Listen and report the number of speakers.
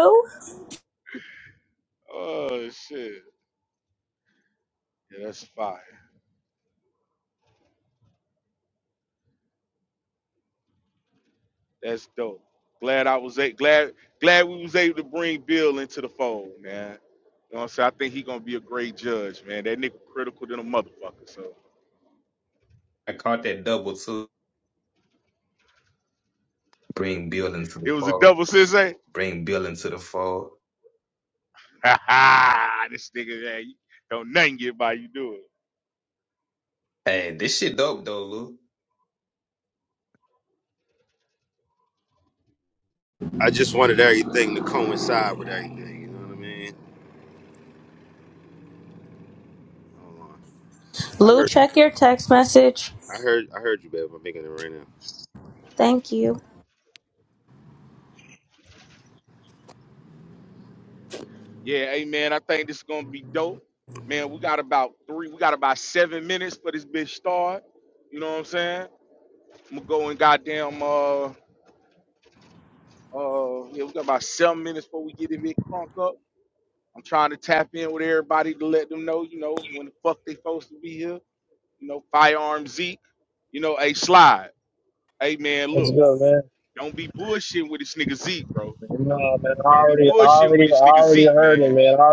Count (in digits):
5